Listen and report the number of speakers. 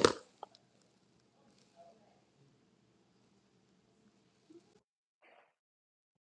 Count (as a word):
zero